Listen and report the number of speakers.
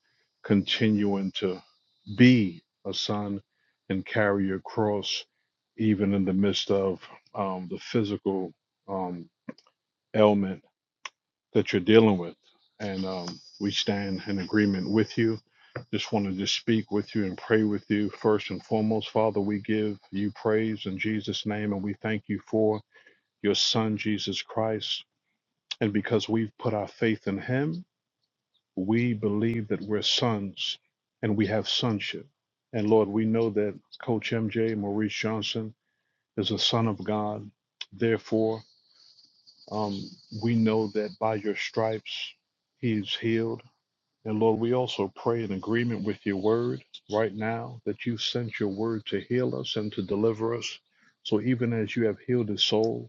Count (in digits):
1